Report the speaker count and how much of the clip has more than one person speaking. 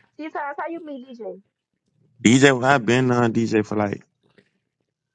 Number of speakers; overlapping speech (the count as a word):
two, no overlap